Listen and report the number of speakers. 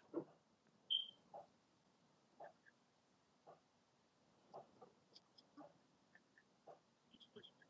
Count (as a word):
zero